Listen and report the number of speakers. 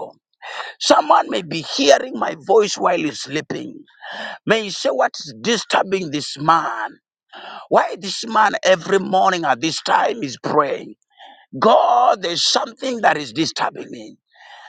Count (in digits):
1